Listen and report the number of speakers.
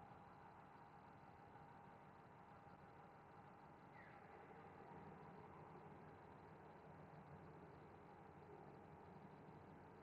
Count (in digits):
0